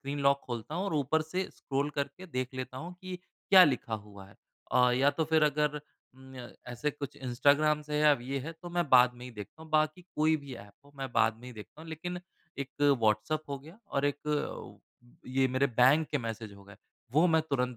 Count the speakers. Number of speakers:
one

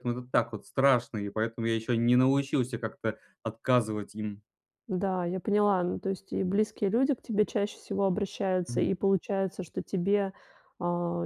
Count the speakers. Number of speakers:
two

